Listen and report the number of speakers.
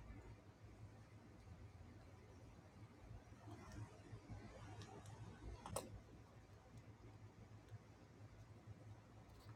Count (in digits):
0